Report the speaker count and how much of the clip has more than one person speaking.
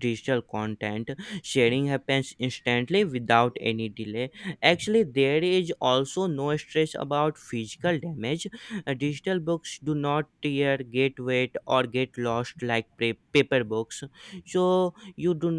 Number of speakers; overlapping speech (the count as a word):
one, no overlap